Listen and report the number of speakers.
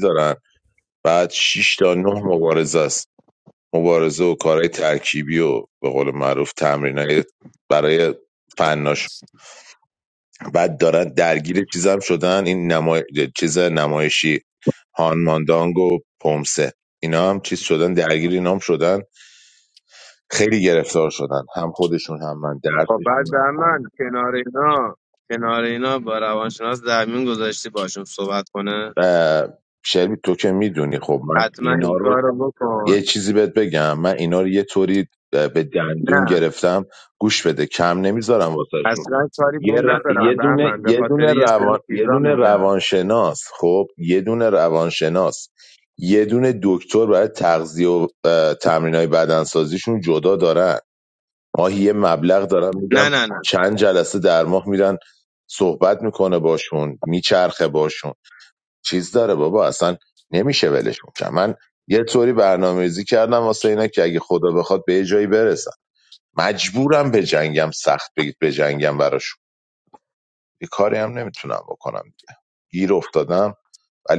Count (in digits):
2